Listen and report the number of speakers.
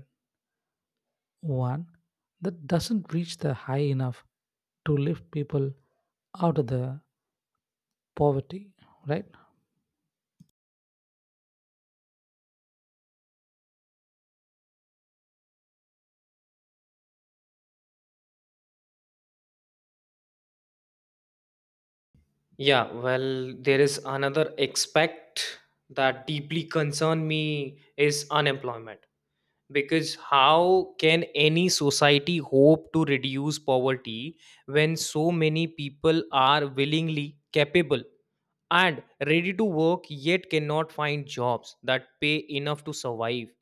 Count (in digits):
2